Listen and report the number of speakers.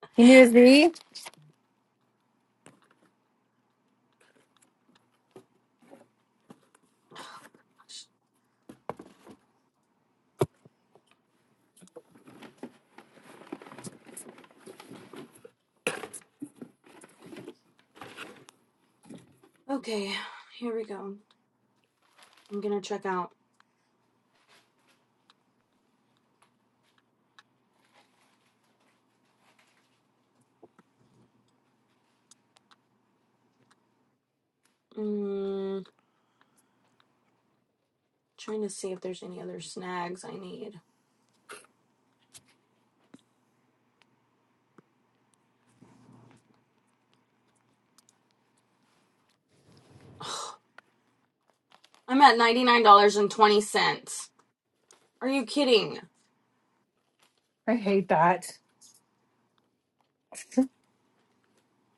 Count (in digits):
2